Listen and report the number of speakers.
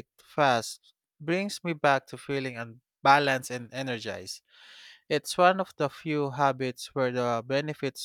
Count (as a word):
one